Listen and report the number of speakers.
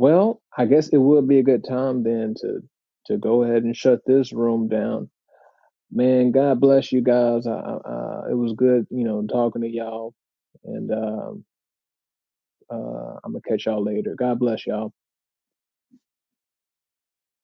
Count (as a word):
one